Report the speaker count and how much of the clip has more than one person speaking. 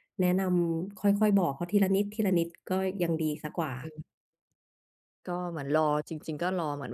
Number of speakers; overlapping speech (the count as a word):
two, no overlap